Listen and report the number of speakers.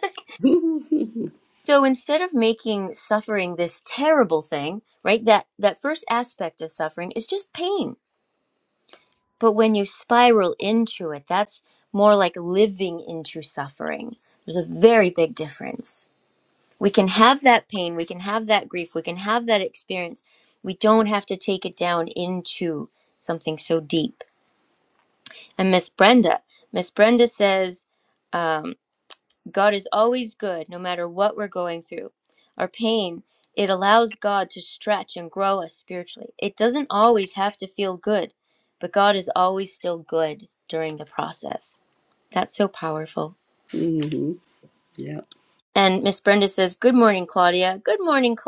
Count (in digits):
2